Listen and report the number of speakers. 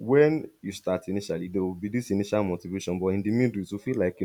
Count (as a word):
one